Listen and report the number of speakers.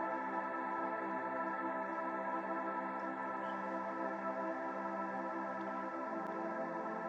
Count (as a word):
zero